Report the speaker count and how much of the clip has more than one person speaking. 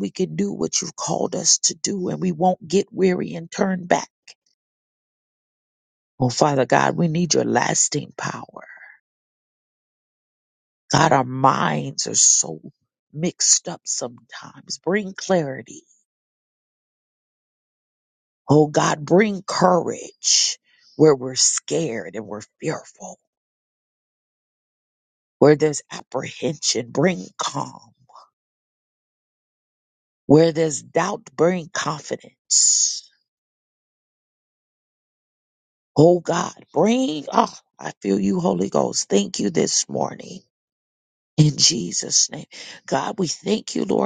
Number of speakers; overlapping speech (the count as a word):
one, no overlap